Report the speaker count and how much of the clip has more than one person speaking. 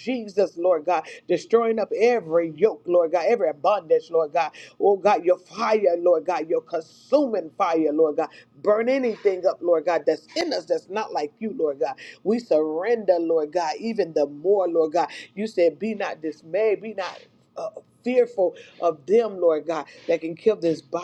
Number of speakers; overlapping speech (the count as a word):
one, no overlap